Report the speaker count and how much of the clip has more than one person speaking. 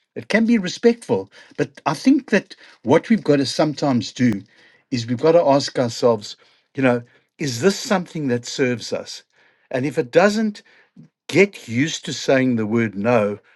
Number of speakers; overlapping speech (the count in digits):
1, no overlap